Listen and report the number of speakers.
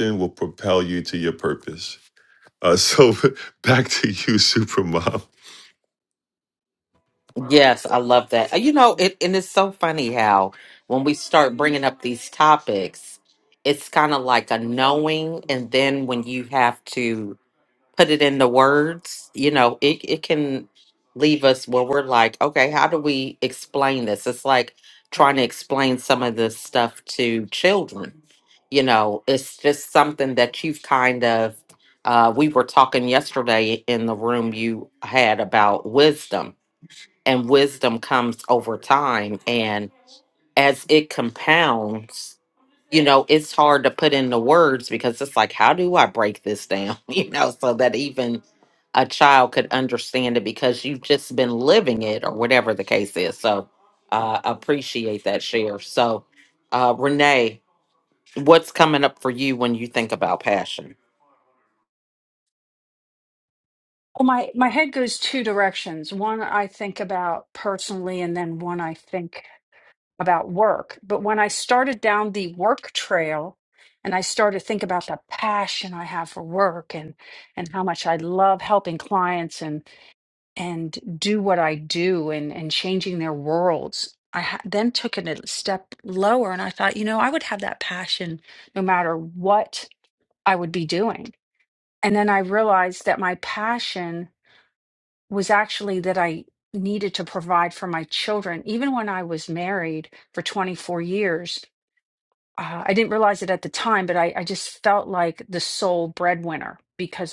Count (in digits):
3